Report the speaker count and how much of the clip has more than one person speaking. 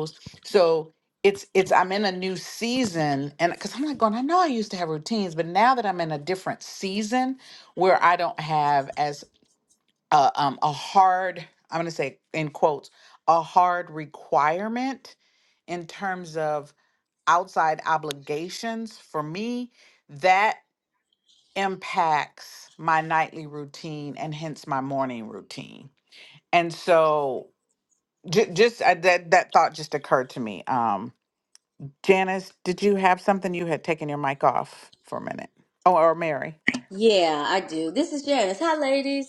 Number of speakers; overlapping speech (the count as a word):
two, no overlap